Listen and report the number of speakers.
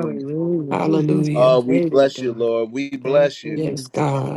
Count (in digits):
3